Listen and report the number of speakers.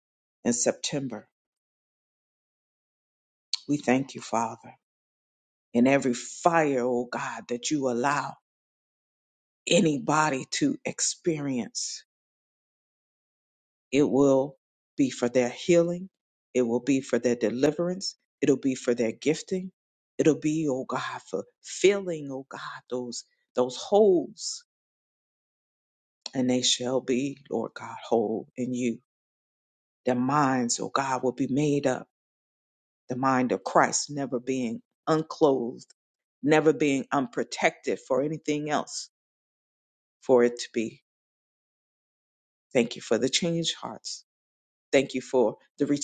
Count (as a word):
one